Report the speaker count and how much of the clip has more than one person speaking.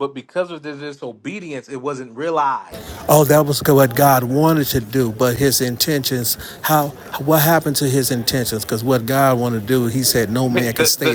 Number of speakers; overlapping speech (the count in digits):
2, about 6%